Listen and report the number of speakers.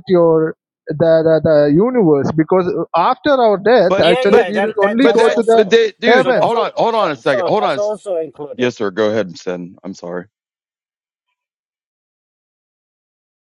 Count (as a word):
three